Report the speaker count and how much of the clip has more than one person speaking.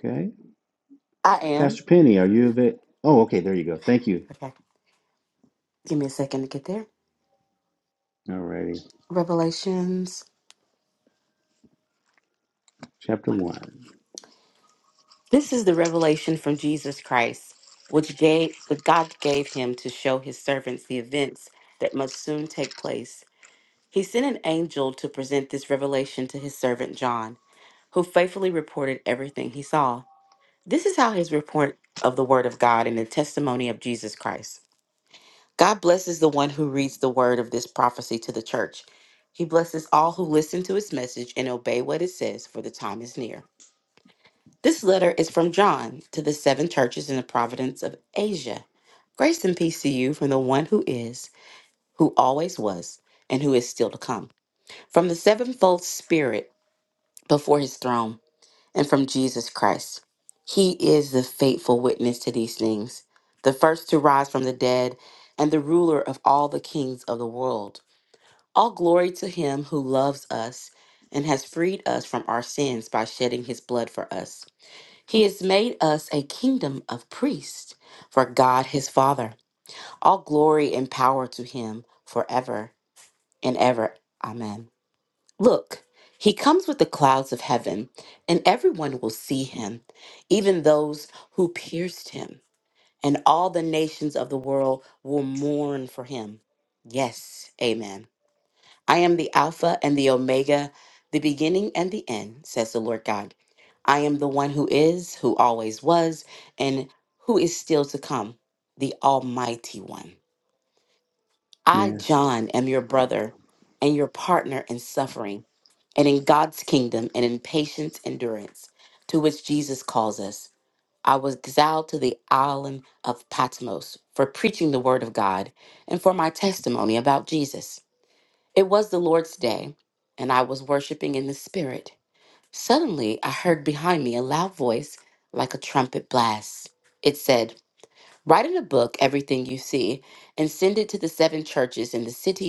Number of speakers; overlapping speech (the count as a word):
two, under 1%